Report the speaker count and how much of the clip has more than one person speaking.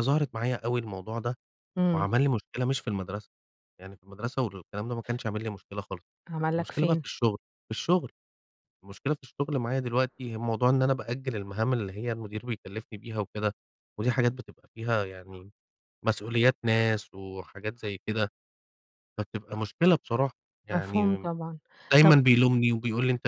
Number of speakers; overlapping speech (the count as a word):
two, about 6%